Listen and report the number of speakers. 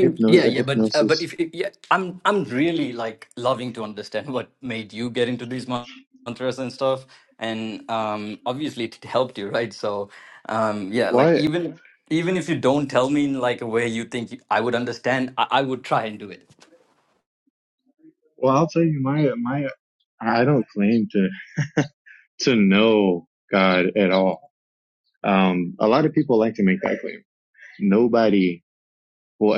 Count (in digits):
2